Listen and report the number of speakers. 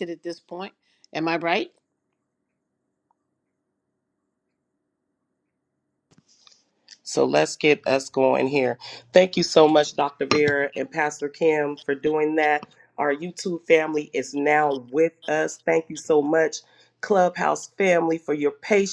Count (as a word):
two